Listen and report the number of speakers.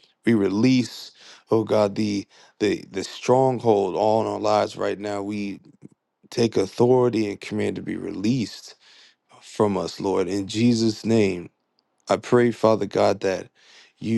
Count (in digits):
1